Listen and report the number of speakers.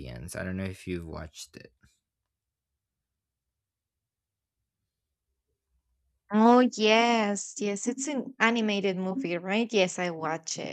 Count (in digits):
2